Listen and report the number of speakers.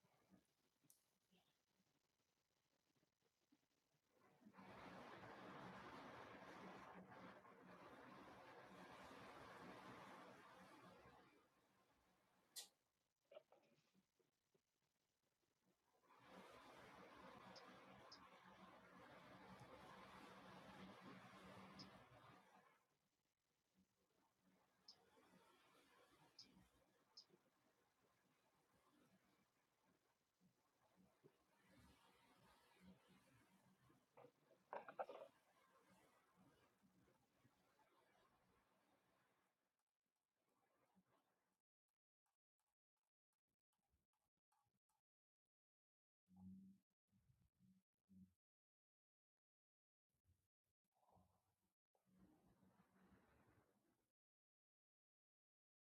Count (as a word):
zero